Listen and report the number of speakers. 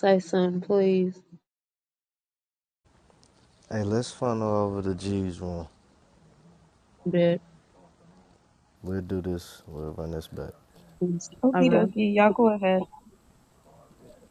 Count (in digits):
3